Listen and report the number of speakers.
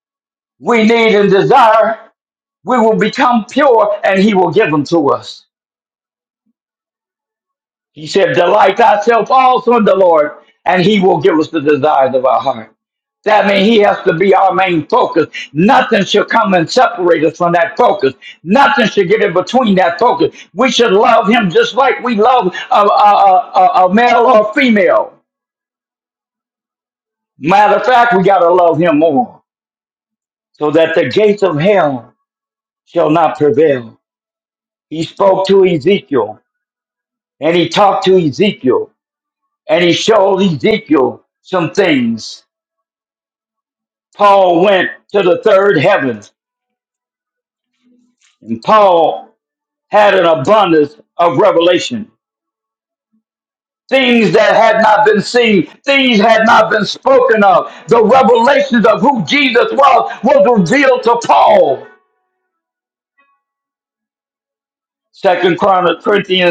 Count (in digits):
1